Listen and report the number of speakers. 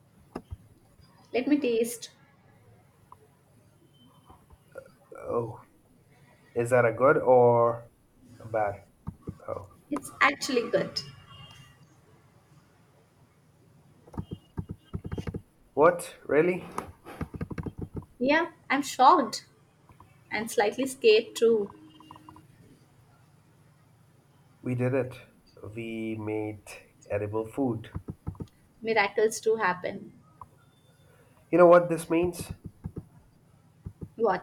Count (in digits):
2